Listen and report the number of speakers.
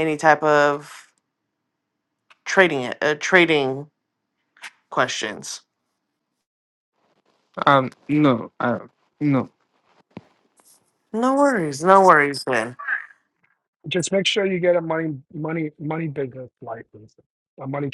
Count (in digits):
3